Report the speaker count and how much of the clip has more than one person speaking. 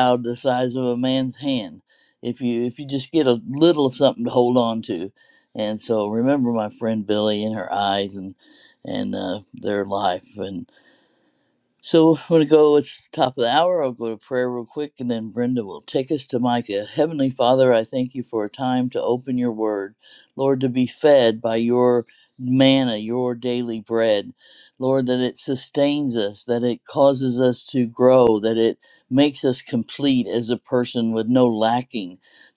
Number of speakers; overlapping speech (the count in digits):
1, no overlap